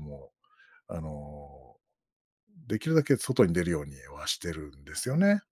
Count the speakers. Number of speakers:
1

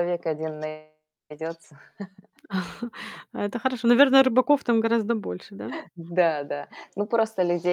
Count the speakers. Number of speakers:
2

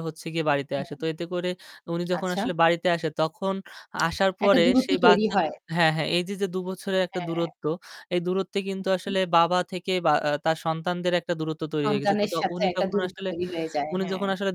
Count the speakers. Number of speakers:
2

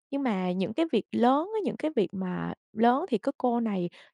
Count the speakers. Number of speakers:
1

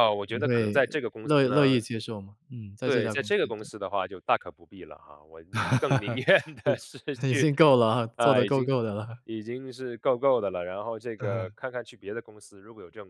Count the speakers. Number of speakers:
2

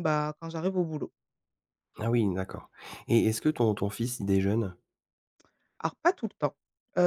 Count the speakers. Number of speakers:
2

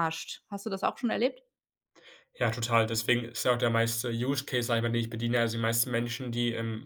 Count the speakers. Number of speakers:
2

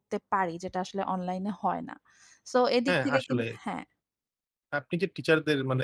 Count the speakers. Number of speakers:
2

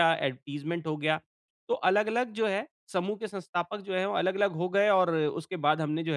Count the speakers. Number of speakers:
1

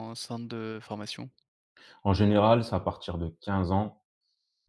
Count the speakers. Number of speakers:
2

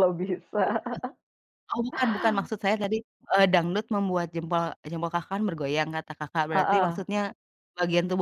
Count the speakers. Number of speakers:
2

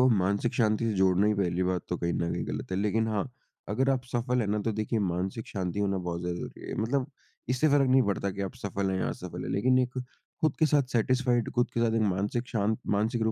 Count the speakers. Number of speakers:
1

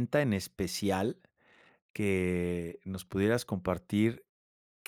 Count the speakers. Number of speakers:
1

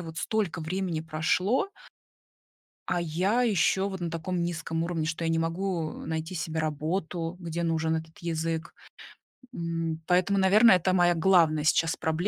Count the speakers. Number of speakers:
1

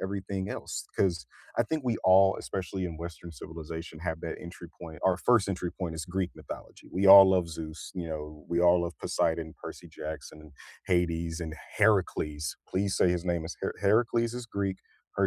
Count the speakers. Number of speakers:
1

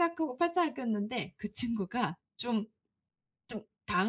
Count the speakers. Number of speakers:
1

